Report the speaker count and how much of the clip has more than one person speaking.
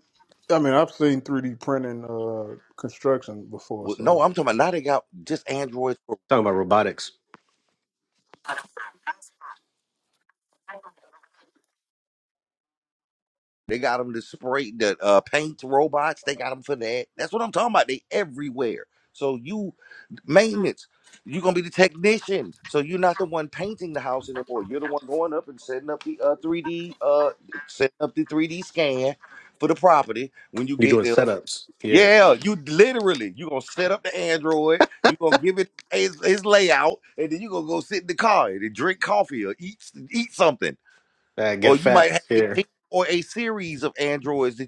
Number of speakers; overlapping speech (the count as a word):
three, about 4%